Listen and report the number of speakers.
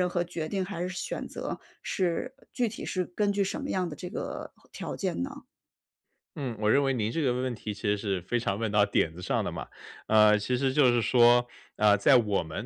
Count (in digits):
2